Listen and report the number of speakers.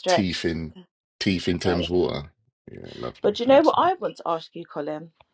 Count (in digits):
2